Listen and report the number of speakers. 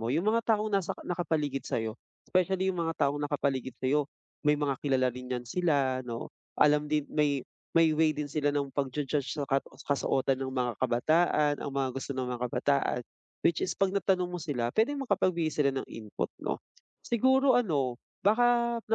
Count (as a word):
one